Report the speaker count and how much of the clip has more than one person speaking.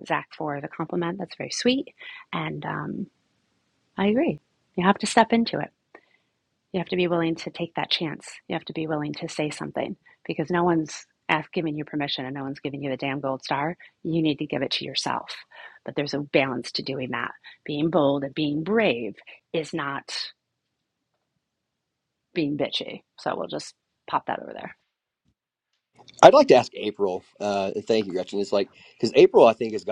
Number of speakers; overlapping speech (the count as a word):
two, no overlap